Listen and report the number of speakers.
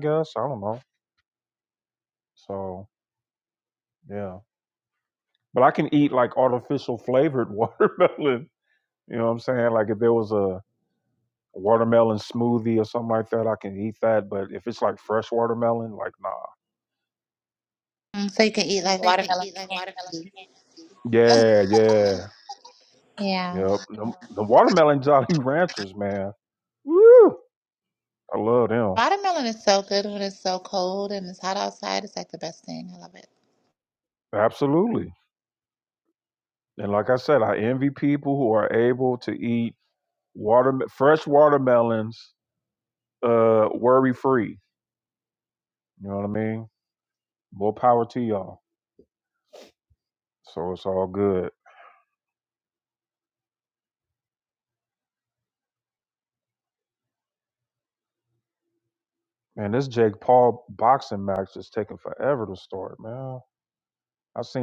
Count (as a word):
two